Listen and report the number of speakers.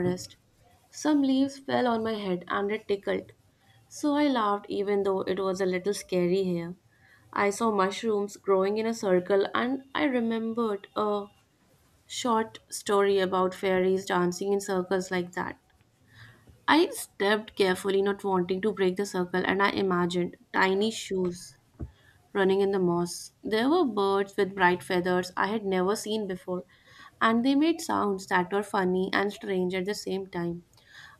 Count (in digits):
1